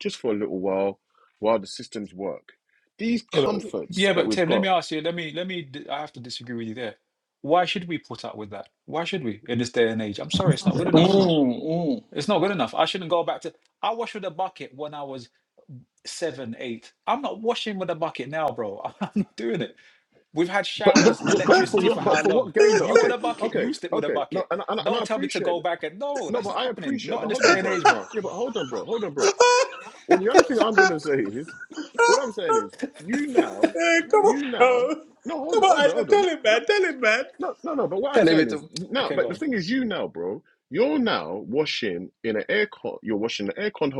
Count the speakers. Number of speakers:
3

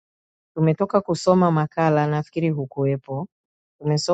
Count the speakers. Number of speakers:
1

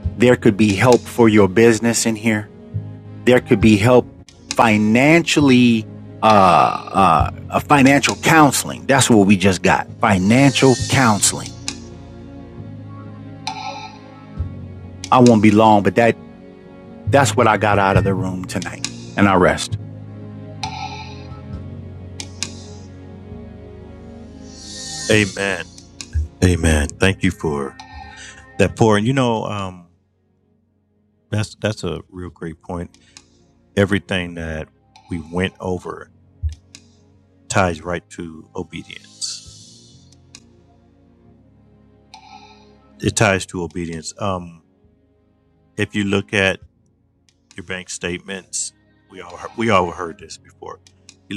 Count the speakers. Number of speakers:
2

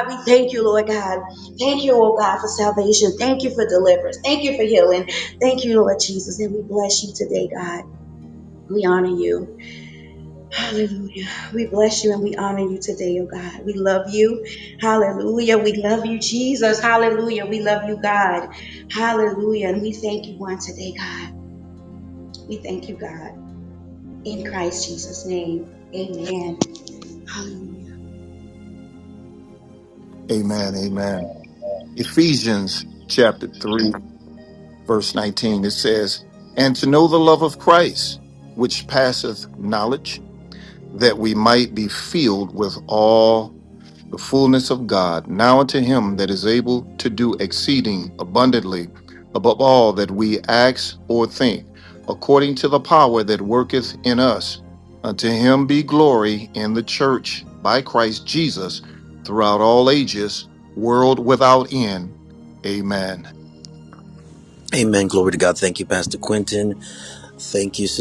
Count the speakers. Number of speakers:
3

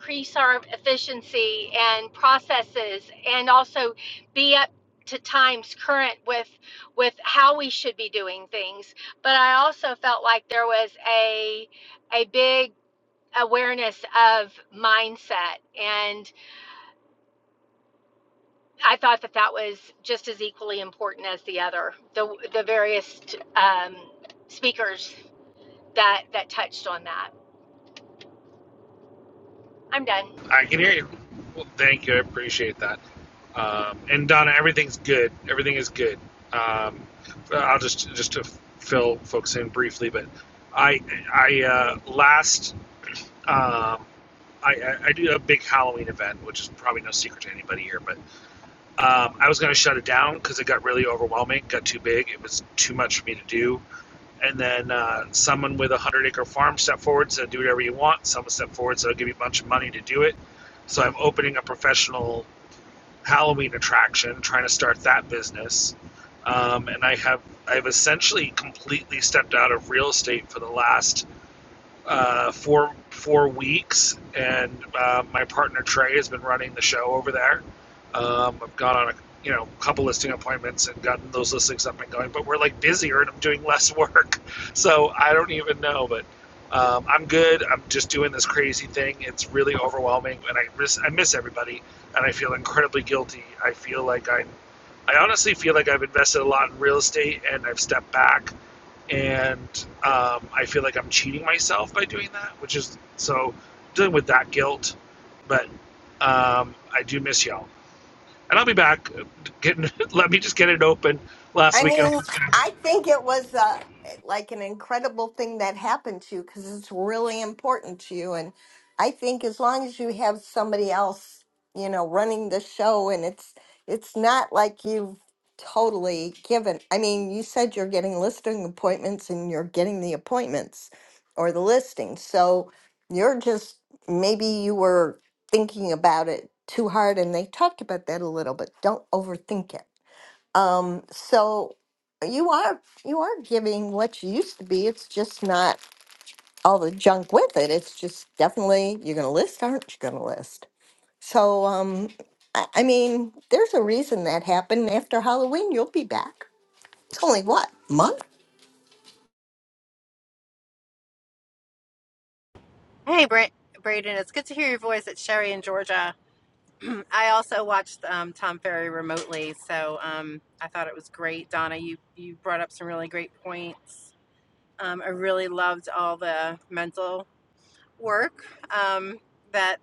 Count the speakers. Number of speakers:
4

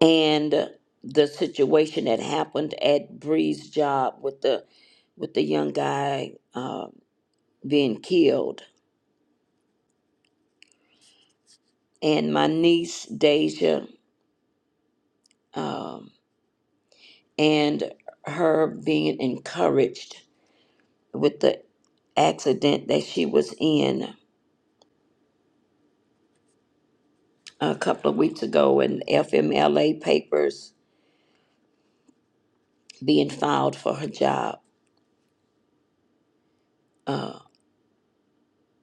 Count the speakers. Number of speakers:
1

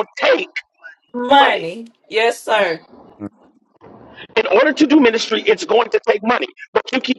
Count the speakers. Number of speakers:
2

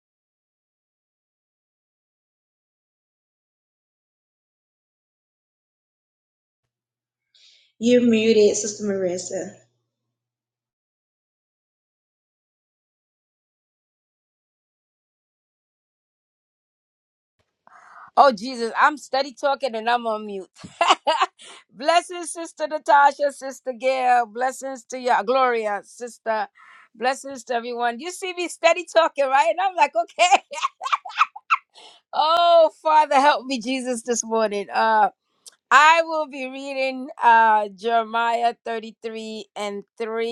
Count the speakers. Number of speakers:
2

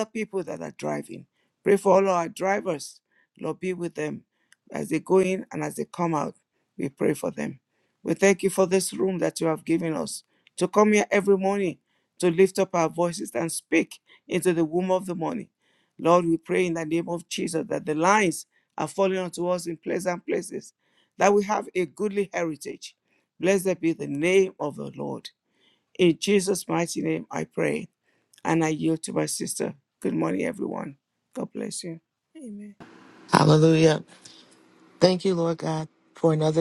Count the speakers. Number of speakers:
2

